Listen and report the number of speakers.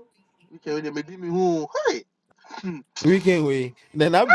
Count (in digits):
2